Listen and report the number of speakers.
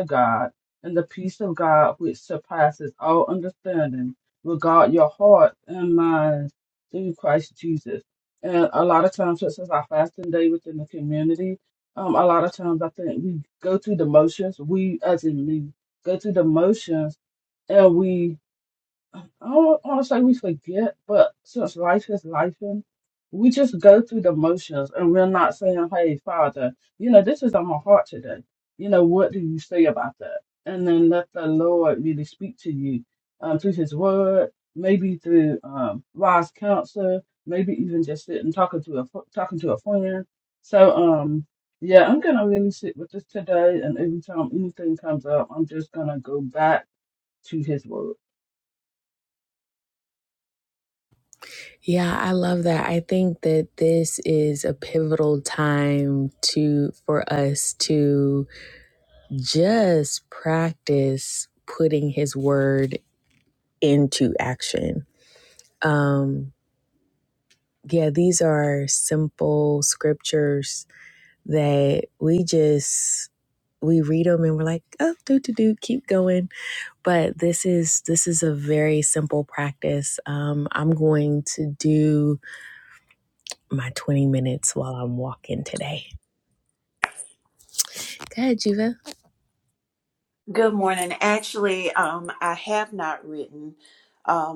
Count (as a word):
three